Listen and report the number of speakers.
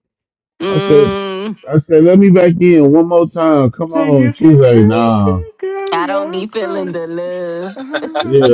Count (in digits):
3